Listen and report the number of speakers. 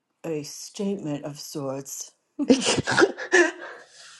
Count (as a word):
two